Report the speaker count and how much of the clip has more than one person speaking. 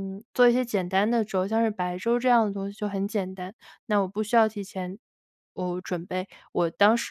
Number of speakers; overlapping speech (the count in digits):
1, no overlap